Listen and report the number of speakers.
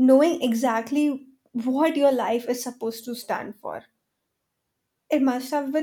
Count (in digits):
1